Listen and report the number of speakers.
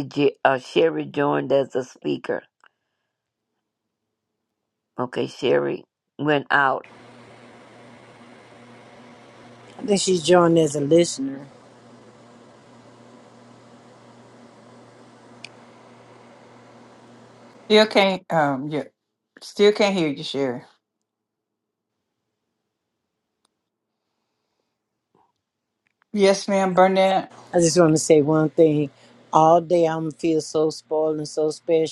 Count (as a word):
three